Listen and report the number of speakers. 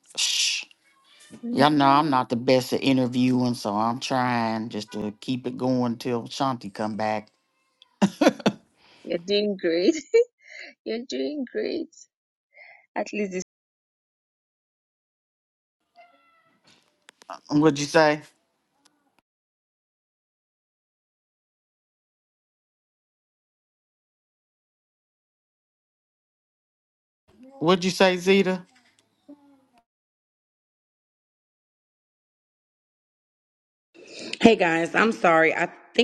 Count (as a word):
three